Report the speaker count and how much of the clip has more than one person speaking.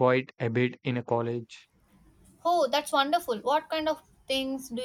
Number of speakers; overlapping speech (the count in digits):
2, no overlap